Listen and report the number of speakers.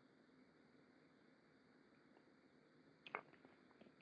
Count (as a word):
zero